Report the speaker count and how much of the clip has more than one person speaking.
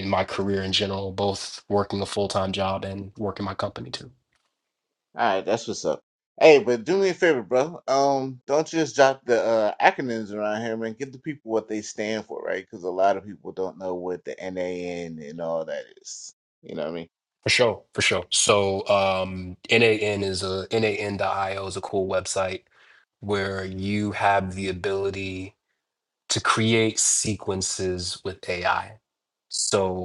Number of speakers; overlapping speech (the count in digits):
2, no overlap